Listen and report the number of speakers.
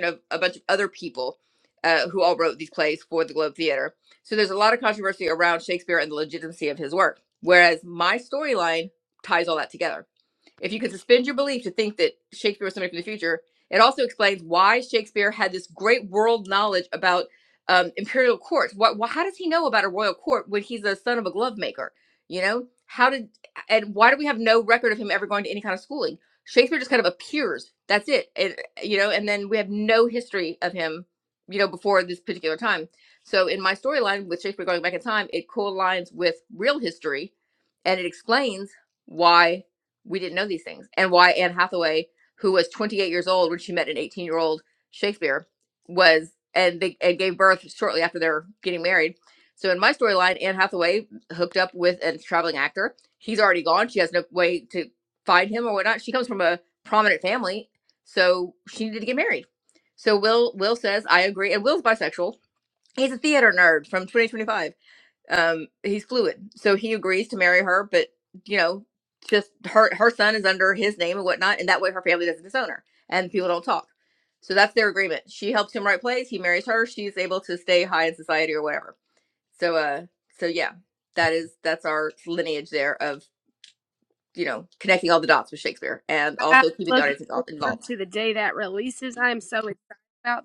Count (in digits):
2